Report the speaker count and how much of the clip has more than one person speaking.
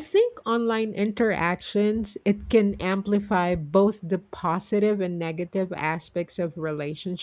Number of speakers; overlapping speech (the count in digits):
1, no overlap